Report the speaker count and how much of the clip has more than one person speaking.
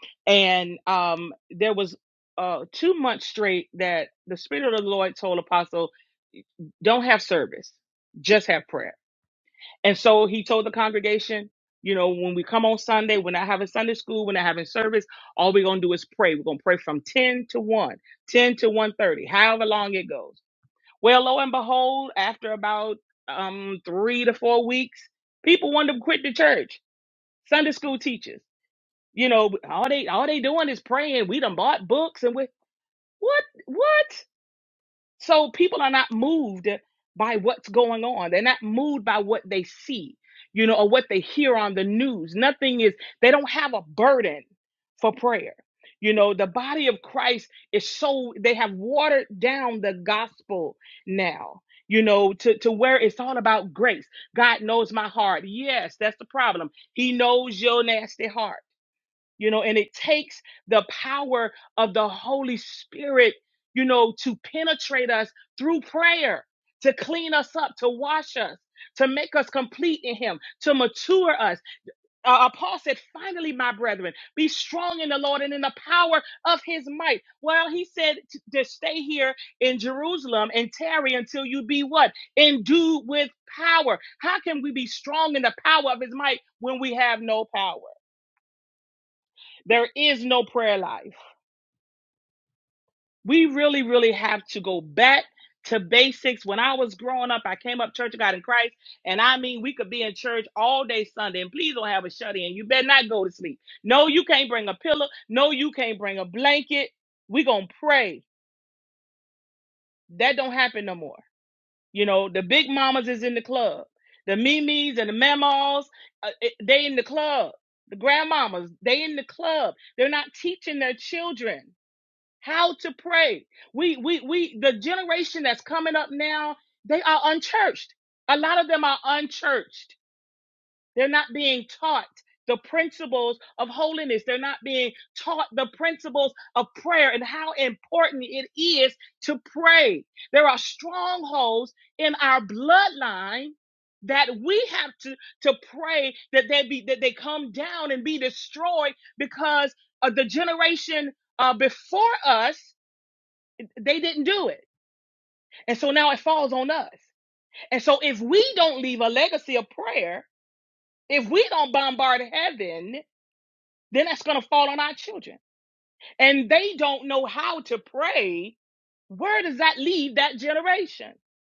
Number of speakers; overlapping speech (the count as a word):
one, no overlap